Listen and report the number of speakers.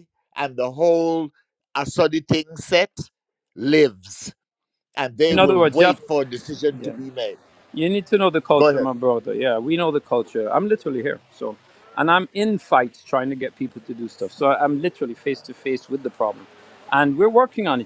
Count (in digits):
2